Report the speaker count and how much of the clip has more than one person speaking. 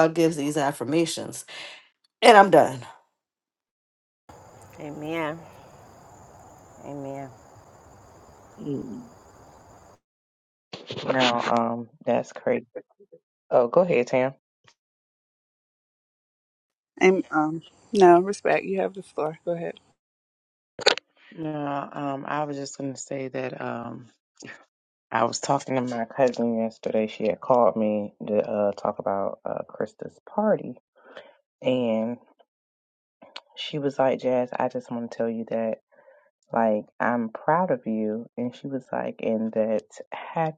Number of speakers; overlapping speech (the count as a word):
four, no overlap